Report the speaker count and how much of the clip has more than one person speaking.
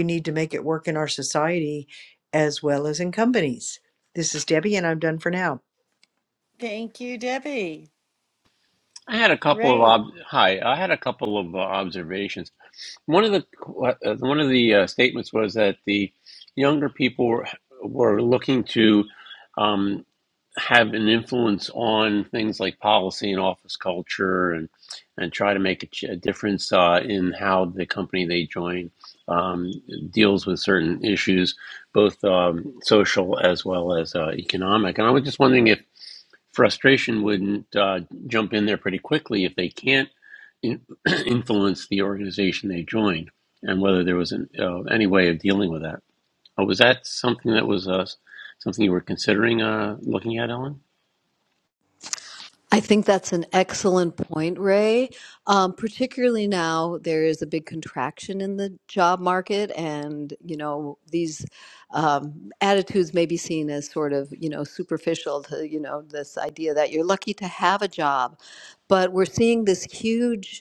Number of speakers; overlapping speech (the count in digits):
4, about 1%